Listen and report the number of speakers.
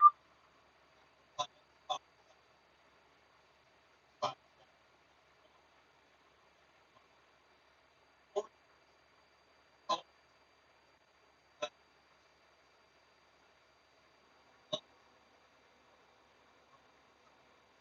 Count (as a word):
zero